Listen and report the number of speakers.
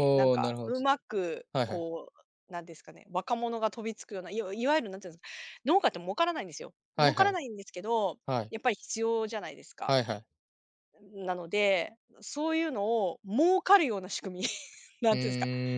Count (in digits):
2